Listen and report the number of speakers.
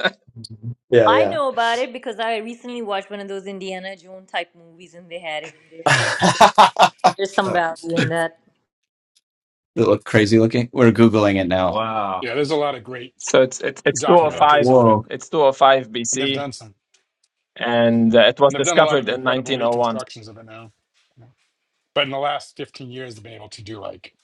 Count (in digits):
4